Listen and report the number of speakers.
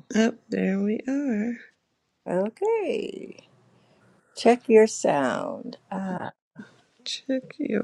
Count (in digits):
2